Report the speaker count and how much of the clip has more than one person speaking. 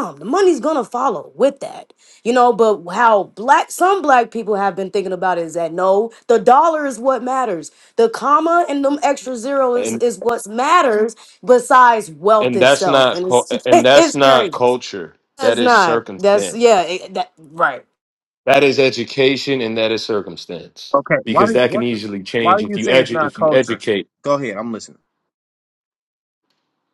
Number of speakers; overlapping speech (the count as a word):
three, about 19%